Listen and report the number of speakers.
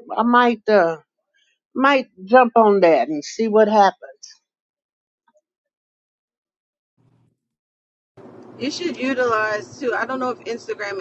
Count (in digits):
2